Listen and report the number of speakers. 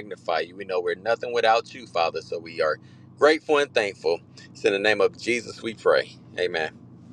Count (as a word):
one